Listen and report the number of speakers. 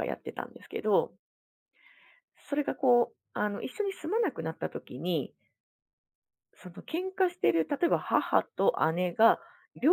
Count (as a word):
one